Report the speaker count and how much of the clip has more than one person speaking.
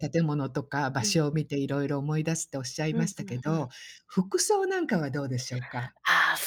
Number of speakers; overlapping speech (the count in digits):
2, about 13%